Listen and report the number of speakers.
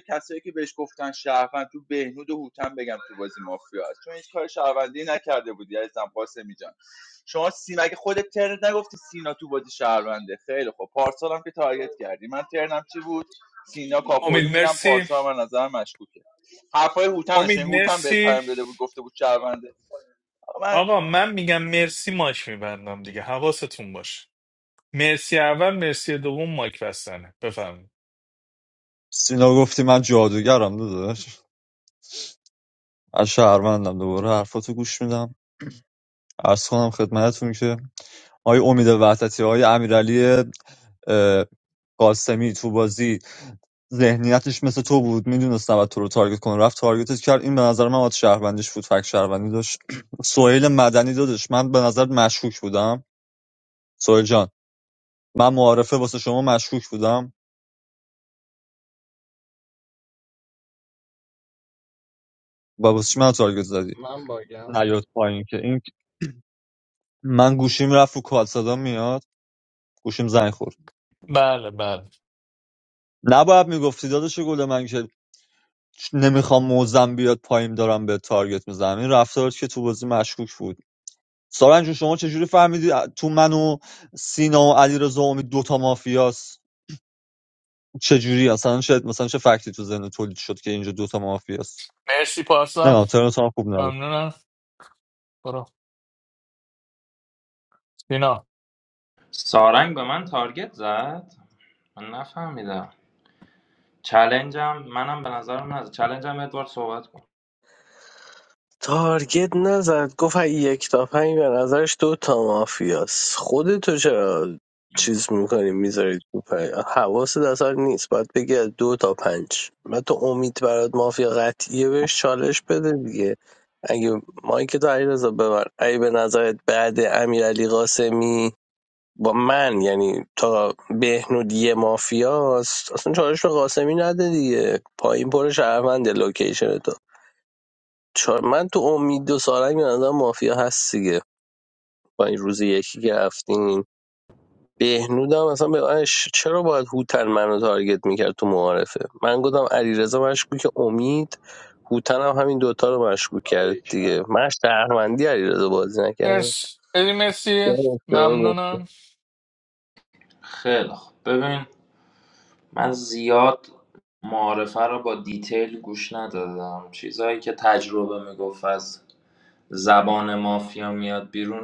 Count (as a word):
six